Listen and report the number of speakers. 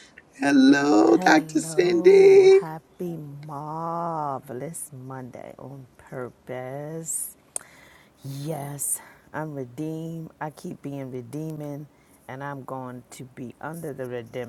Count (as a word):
two